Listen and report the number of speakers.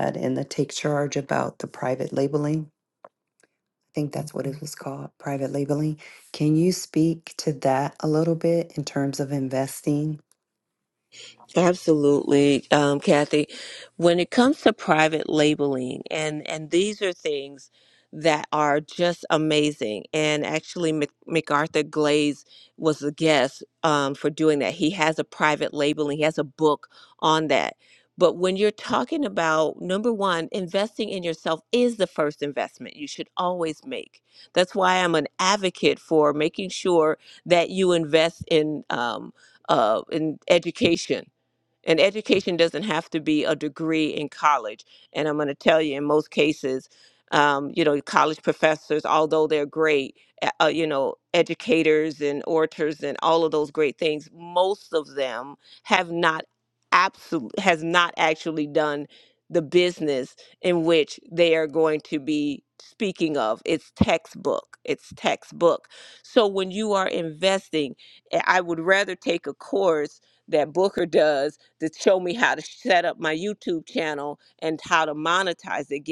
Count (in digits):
2